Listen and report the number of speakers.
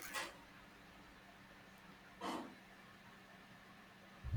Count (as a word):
zero